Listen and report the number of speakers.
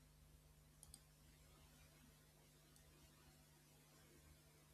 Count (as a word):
zero